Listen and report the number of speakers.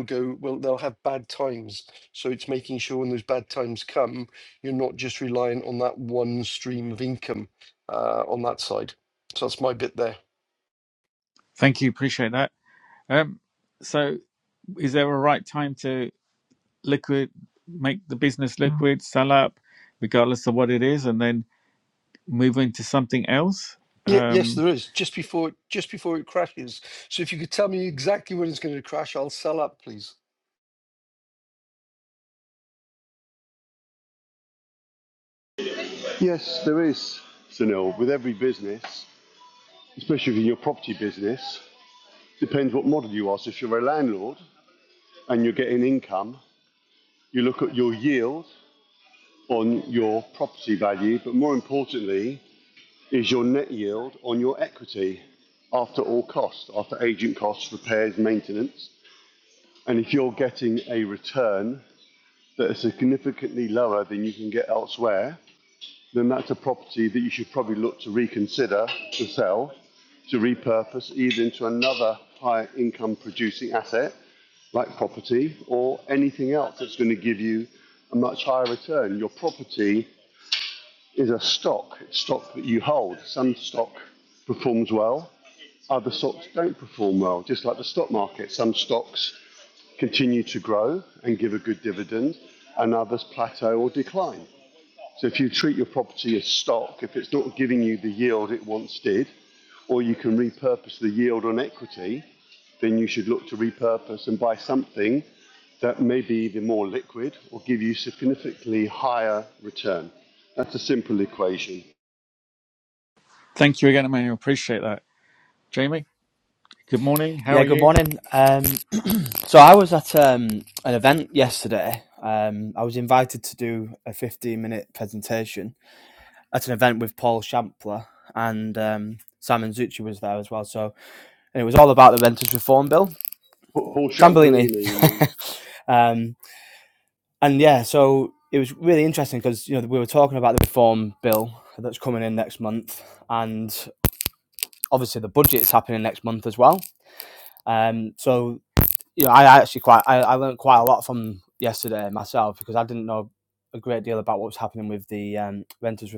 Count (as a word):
four